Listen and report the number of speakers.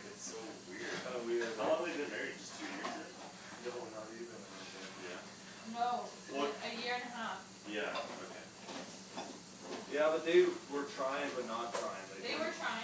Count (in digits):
3